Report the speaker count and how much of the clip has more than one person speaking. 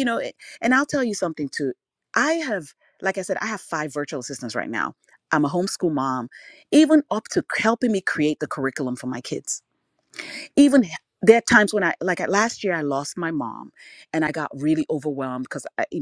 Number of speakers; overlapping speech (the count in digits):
1, no overlap